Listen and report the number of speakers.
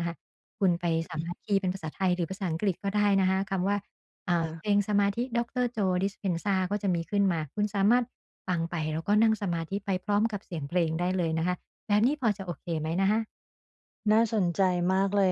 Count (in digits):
2